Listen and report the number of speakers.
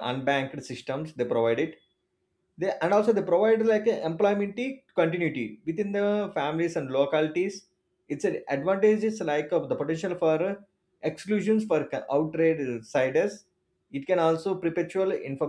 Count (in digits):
1